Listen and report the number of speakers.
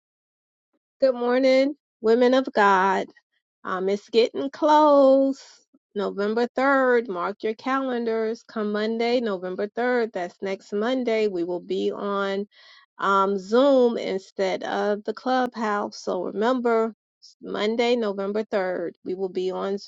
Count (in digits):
1